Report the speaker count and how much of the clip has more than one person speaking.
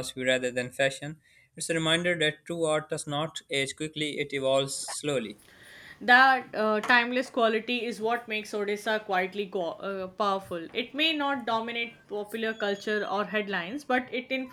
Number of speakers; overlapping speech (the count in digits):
2, no overlap